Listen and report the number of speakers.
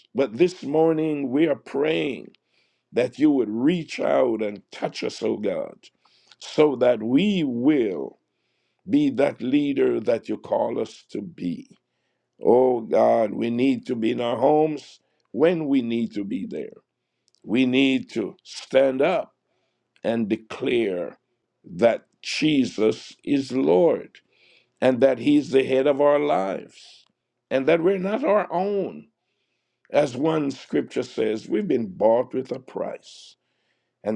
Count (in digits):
1